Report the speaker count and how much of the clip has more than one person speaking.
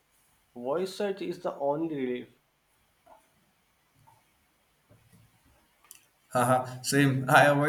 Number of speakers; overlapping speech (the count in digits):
2, no overlap